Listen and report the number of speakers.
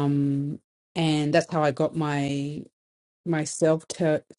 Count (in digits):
1